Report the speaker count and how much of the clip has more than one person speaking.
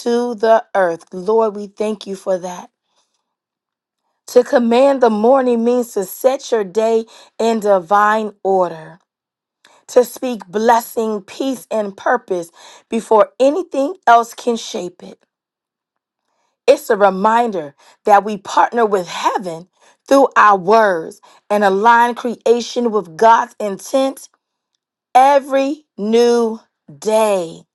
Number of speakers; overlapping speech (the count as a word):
one, no overlap